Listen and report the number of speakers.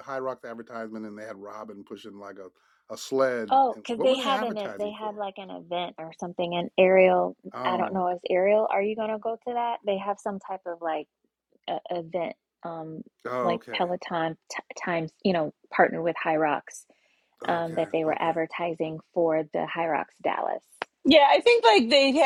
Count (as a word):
three